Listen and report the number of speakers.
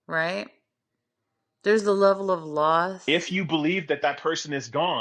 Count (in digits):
2